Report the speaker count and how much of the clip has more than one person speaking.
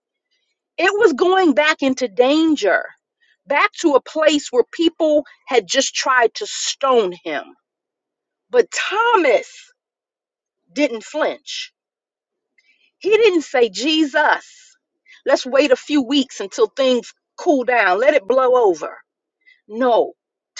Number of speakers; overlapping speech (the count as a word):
one, no overlap